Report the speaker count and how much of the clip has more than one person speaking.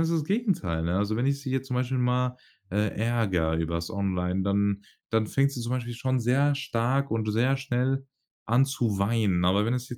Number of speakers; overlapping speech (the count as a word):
one, no overlap